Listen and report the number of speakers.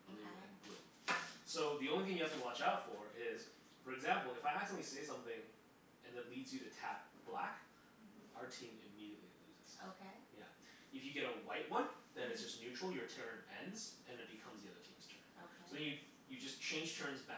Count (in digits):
2